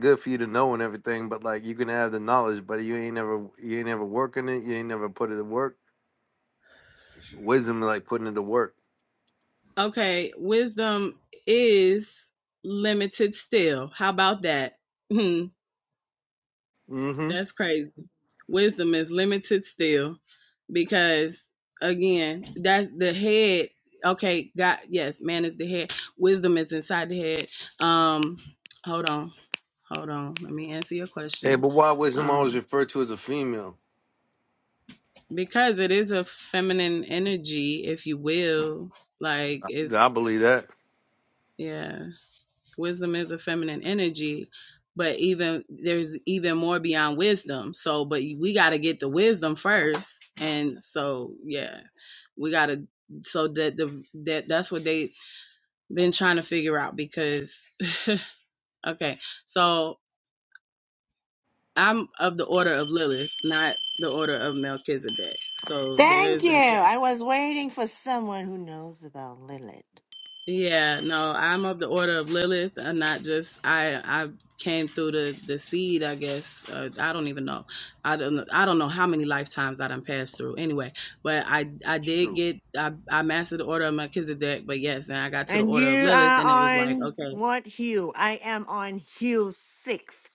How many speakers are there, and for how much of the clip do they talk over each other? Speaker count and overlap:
three, about 4%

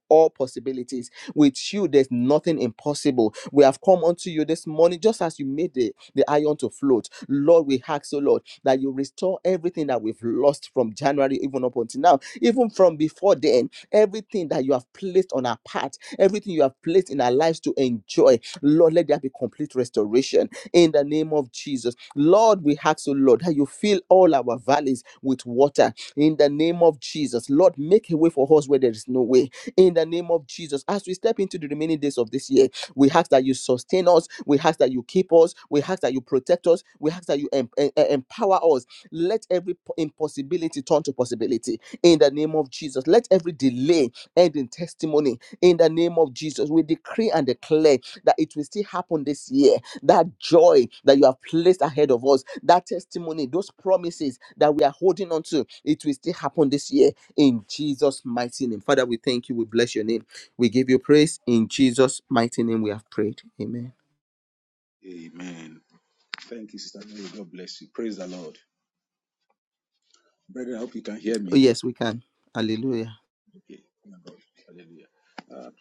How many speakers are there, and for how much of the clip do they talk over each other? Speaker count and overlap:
two, under 1%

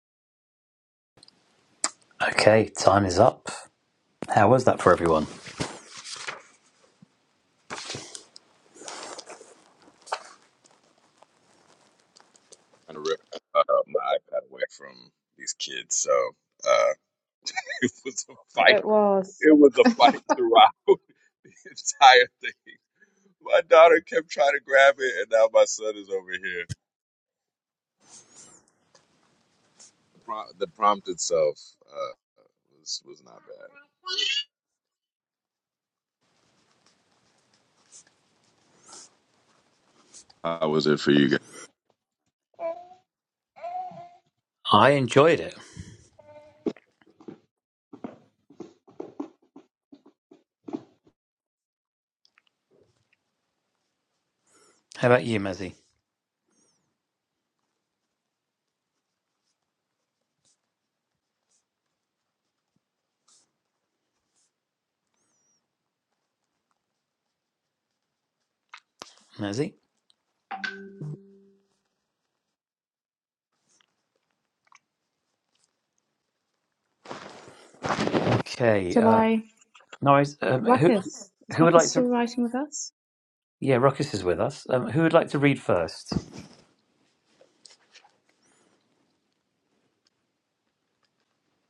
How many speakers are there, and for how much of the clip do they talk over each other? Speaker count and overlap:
three, about 1%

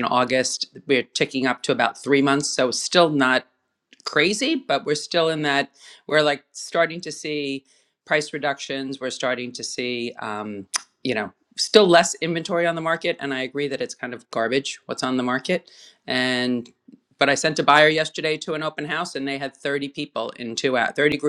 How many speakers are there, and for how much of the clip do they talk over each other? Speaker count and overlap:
one, no overlap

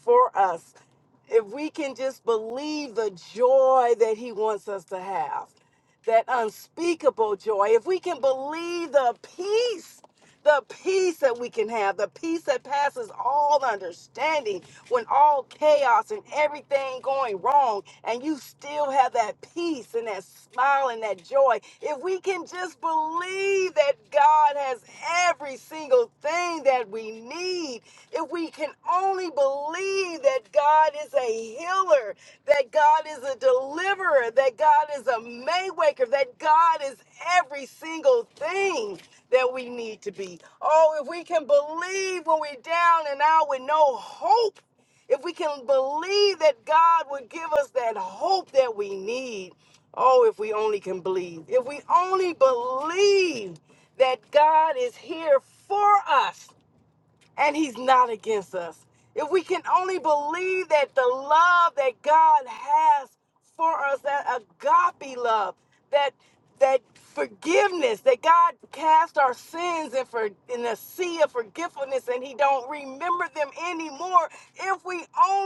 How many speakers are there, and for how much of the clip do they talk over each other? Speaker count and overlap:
one, no overlap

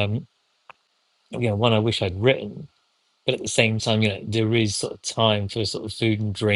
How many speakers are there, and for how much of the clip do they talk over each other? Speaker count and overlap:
one, no overlap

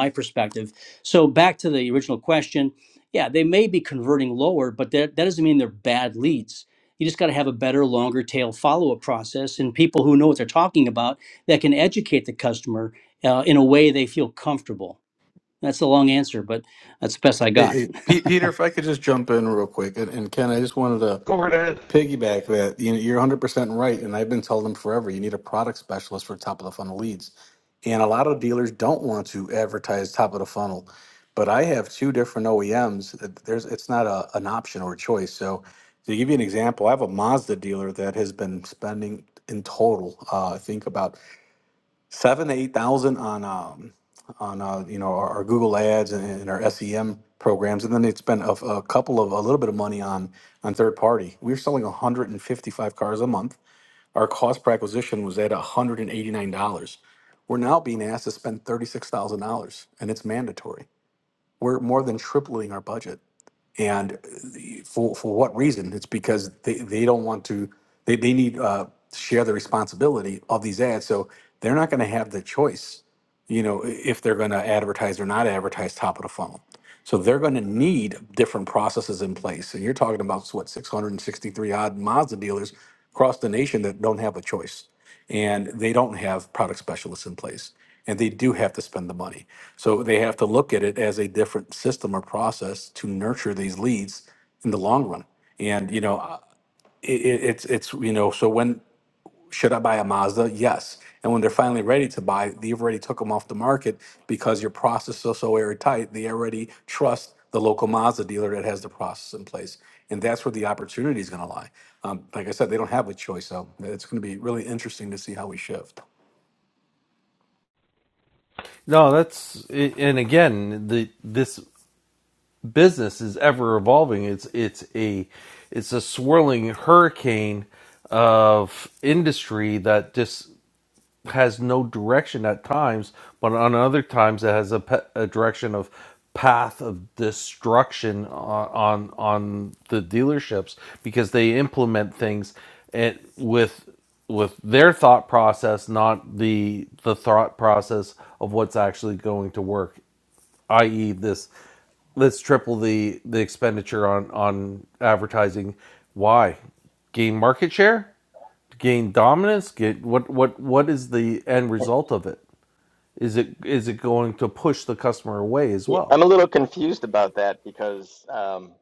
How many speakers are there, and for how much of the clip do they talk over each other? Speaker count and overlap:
four, under 1%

